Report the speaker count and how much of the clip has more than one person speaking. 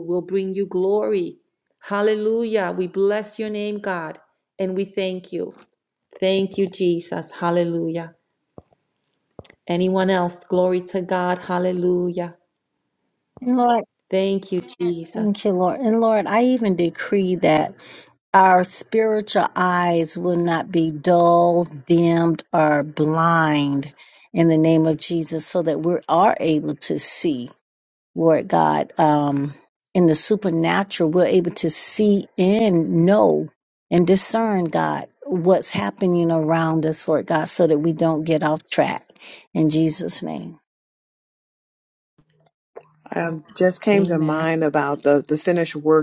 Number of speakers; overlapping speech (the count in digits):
3, about 1%